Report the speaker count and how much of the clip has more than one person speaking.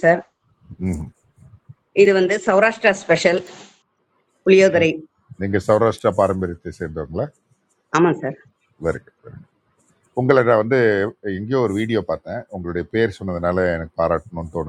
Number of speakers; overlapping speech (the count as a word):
two, about 1%